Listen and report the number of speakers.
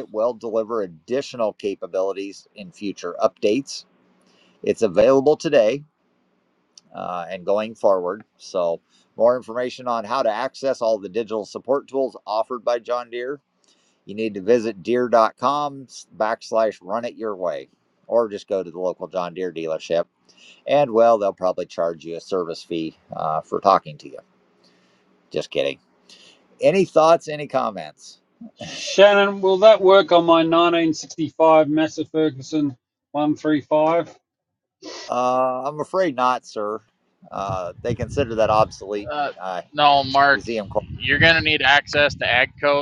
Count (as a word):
three